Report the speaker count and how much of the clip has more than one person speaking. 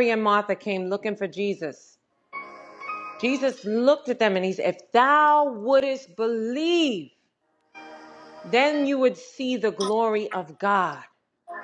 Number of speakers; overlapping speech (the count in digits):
1, no overlap